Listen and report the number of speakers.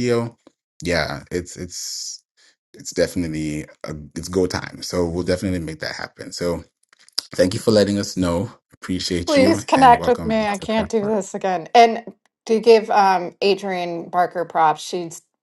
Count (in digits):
2